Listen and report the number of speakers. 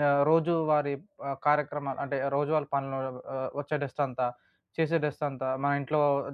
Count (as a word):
one